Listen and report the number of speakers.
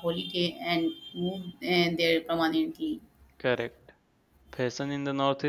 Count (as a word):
two